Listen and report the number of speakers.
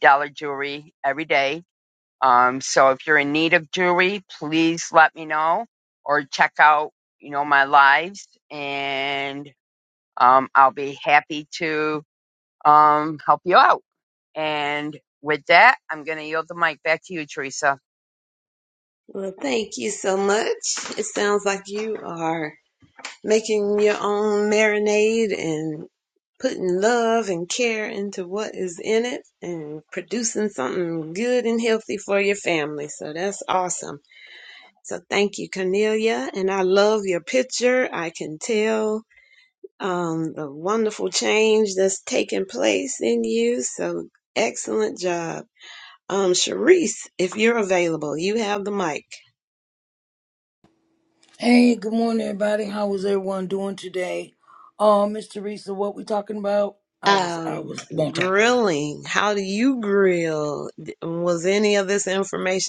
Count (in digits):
3